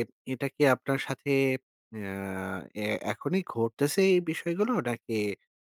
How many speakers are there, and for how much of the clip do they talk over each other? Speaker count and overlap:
one, no overlap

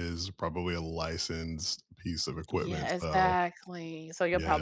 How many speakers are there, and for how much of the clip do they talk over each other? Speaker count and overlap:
two, about 25%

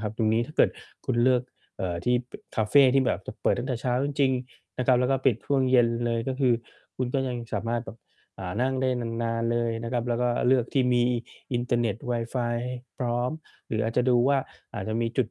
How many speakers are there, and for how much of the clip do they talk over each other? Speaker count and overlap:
one, no overlap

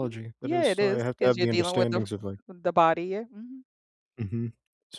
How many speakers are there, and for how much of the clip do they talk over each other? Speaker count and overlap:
two, about 34%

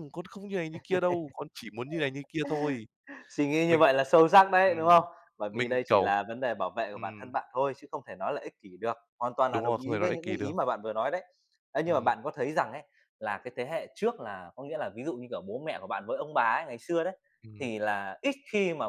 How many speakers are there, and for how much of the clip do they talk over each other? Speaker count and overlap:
two, about 13%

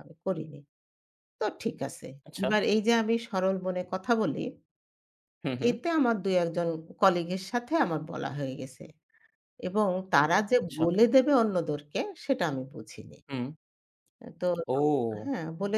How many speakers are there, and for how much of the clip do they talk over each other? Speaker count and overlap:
two, about 4%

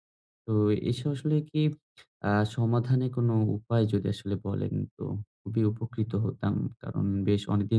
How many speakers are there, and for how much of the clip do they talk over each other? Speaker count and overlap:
one, no overlap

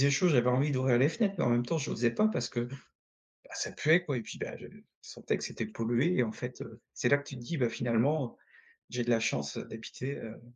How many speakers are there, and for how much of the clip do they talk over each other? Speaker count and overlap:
one, no overlap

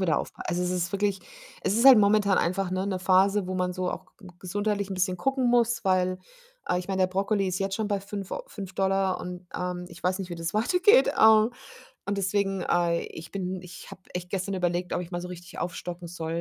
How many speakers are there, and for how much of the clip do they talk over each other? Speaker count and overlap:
one, no overlap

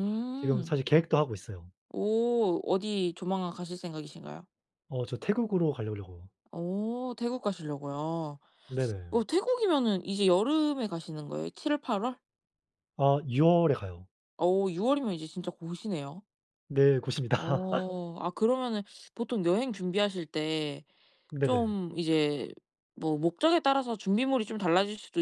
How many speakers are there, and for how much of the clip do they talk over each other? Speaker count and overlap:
two, about 3%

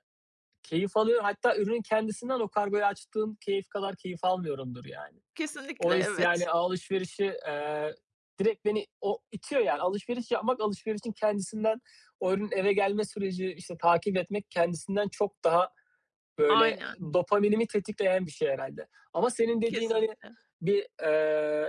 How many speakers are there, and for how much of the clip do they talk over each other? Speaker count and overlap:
two, about 8%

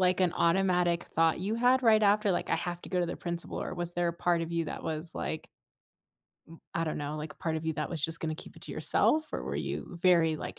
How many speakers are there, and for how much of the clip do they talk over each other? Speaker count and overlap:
one, no overlap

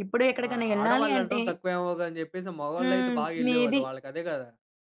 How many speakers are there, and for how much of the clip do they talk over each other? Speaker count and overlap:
two, about 43%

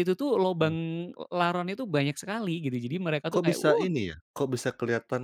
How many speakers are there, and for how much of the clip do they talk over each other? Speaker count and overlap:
two, about 14%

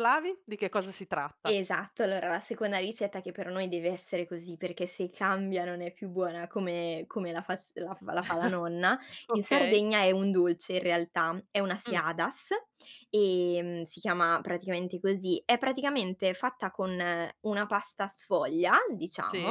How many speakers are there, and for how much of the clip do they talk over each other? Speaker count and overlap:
two, about 5%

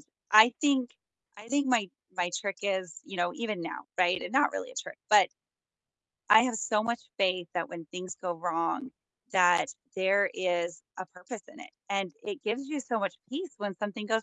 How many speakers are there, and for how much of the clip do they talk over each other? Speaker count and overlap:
one, no overlap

